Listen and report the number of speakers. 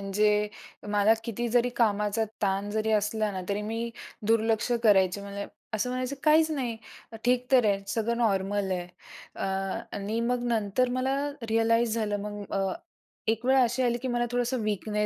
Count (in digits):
1